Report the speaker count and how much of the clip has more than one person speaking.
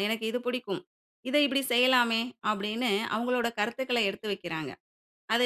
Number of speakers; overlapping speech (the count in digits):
1, no overlap